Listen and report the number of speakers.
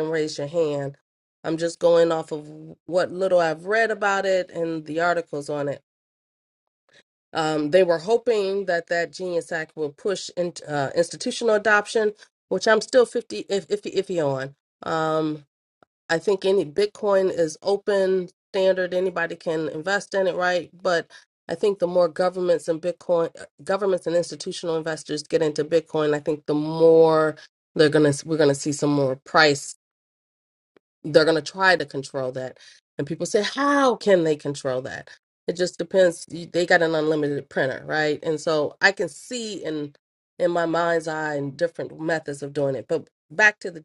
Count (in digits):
1